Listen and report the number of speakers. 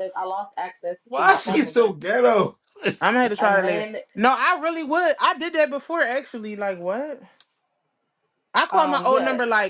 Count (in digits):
3